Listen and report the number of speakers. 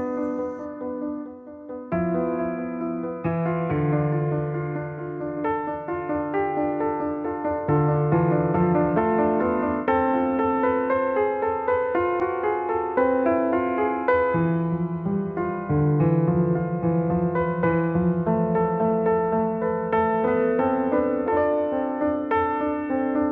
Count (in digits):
0